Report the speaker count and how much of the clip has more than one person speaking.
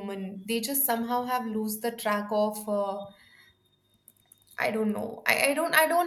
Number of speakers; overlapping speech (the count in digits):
1, no overlap